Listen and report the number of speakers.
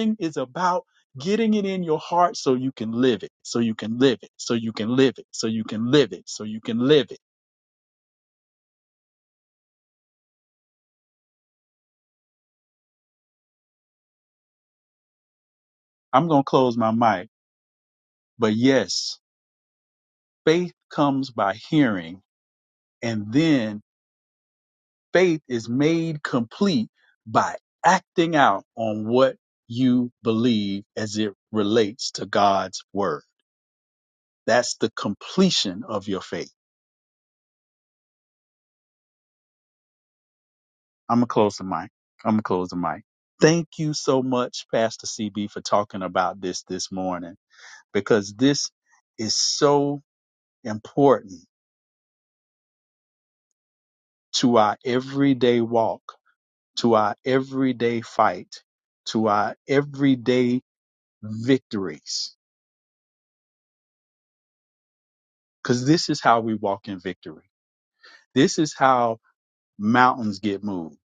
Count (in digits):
1